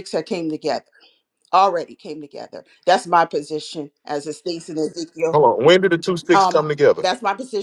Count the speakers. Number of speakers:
2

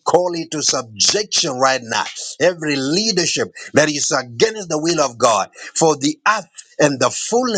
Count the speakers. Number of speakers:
1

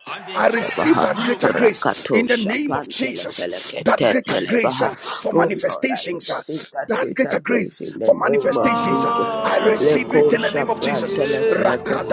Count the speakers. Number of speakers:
2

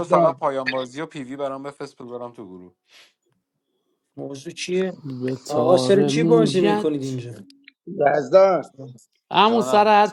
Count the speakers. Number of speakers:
4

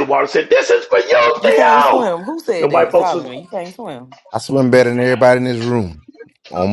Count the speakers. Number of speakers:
3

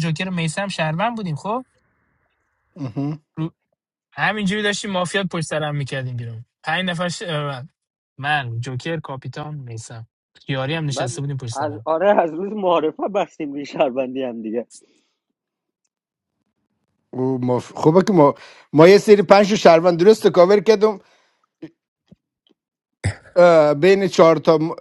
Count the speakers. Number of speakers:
3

